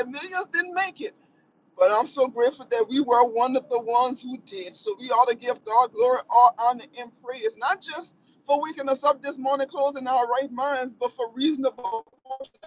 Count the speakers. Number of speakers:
one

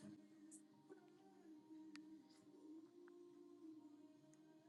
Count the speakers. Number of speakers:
zero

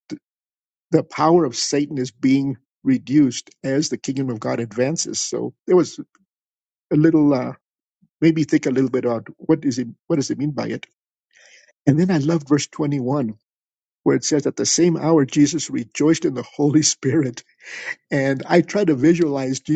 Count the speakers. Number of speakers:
one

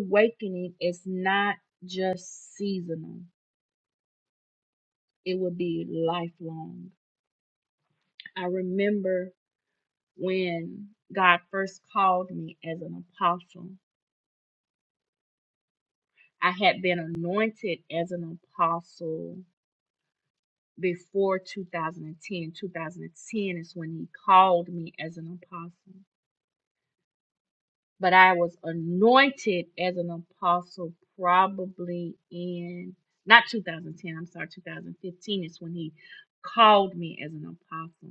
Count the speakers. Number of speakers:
one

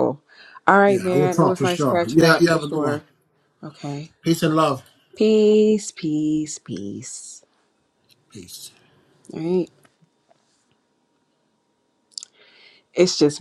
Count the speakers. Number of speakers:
two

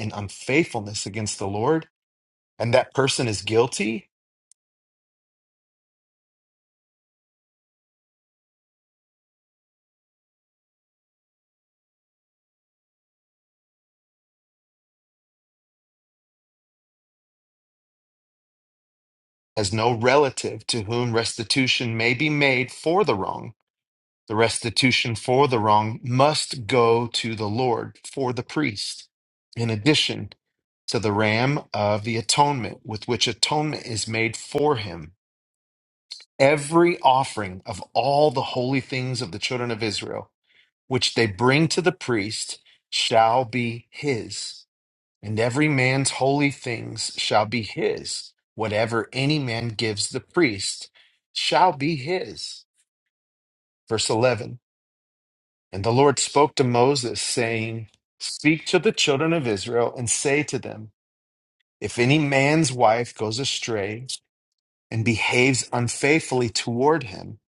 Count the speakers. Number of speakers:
one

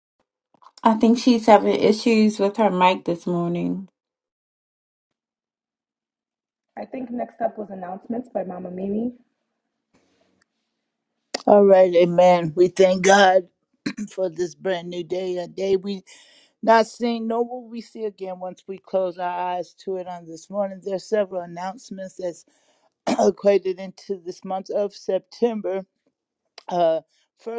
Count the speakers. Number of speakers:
three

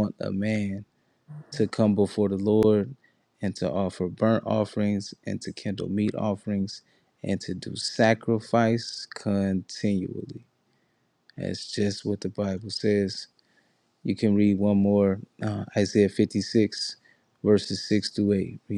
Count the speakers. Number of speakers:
one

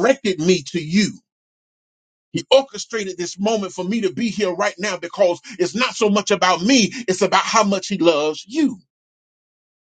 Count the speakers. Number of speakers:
one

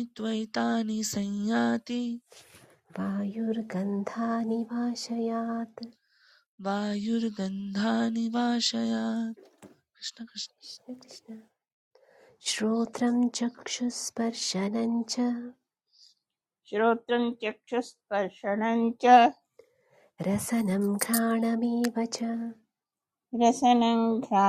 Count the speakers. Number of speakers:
three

